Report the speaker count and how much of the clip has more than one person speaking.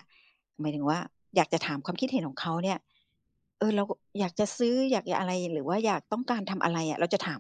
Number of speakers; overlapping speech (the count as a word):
one, no overlap